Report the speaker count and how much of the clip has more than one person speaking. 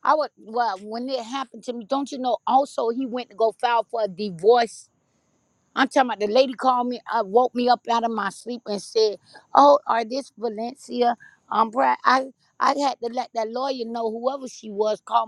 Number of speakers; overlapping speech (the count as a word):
one, no overlap